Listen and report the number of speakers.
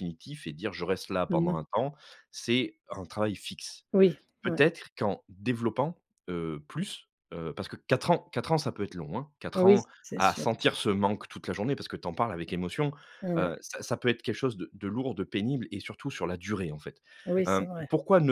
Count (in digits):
2